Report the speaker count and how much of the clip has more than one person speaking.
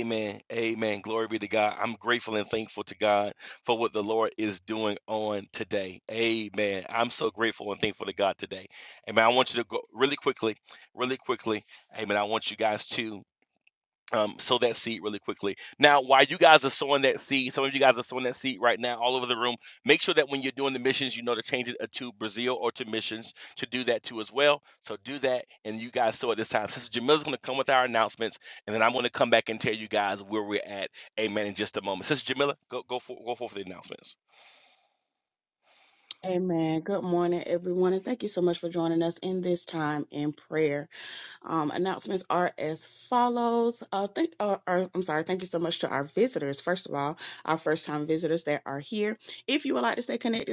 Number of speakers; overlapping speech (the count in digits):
2, no overlap